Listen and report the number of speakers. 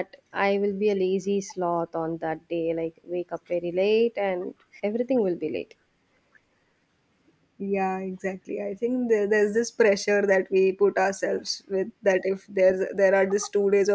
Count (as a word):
two